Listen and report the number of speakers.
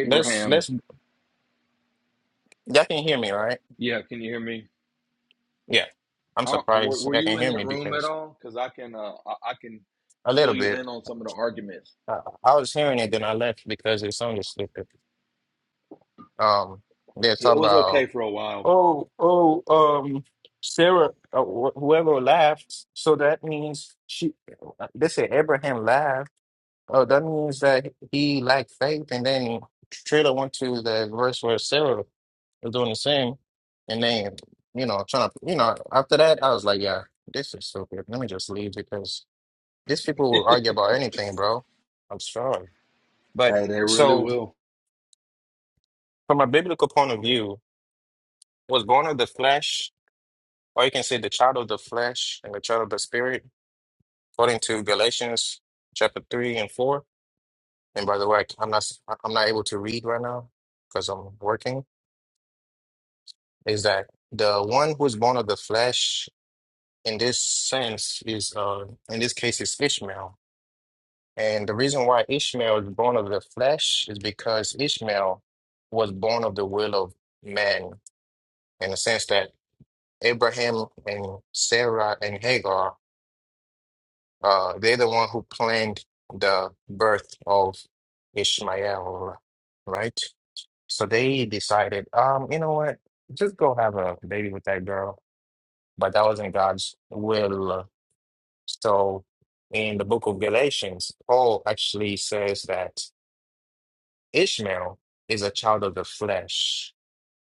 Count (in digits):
2